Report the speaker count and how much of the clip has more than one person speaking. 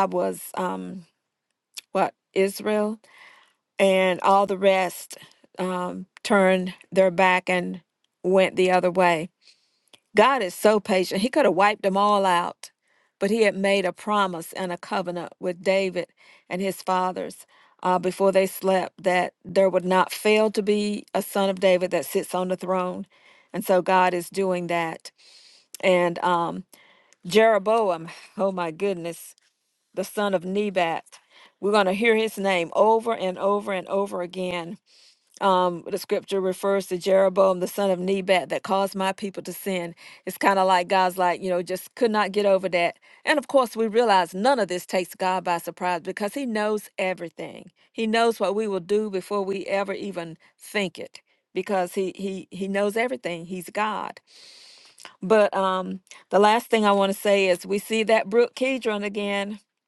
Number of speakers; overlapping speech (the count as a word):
one, no overlap